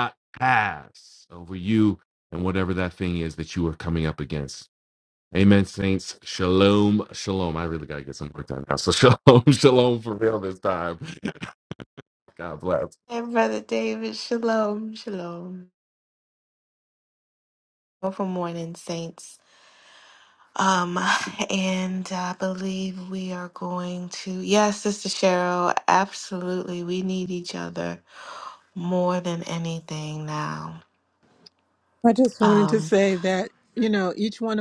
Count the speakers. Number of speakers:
3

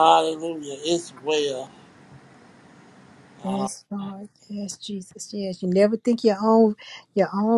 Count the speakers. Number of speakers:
2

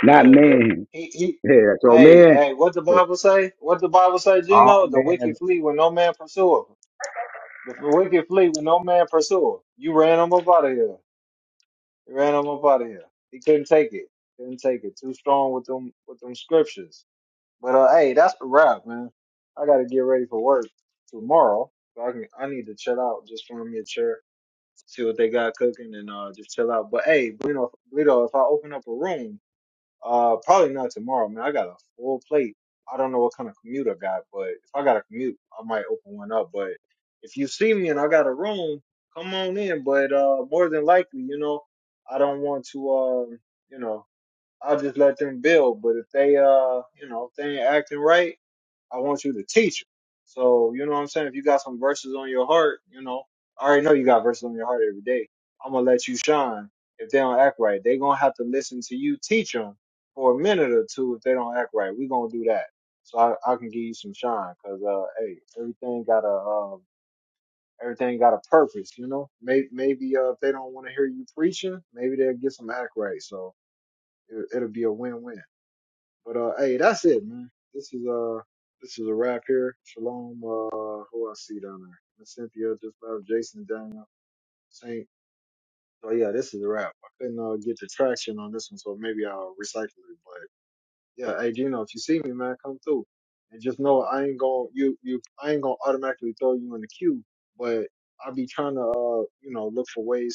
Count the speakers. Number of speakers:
2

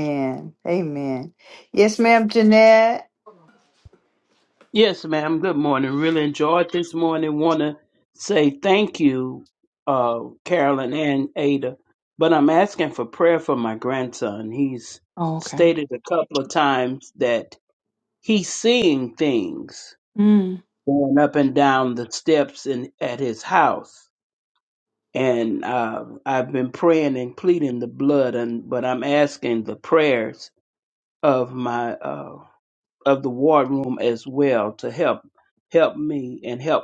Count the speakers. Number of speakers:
2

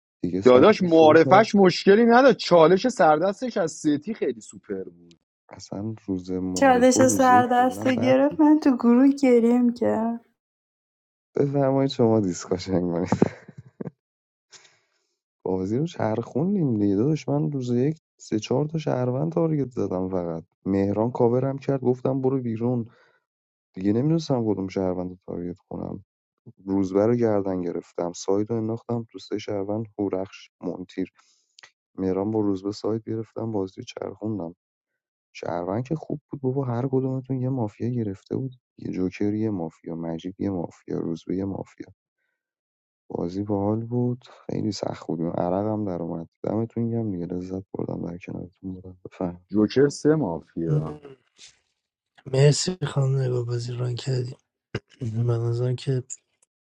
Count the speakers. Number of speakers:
4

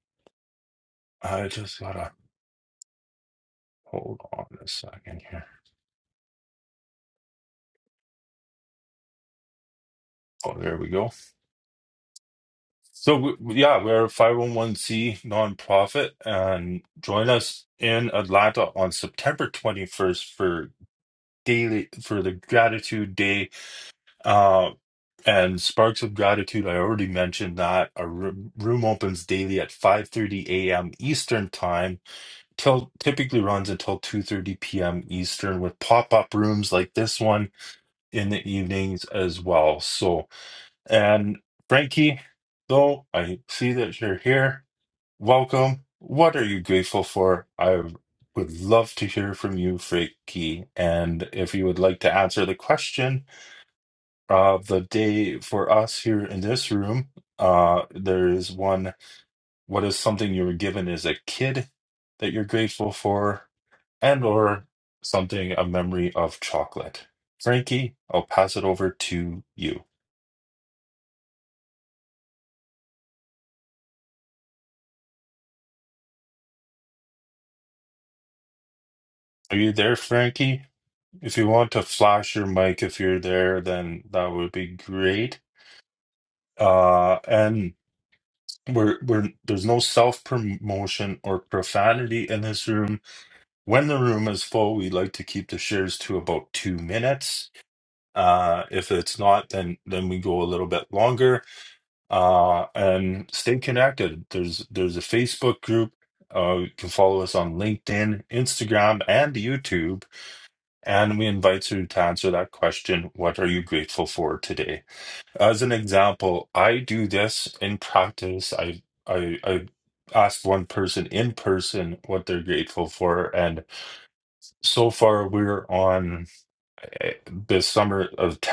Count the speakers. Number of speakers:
1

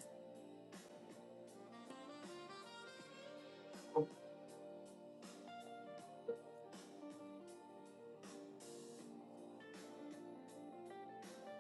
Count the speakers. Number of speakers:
0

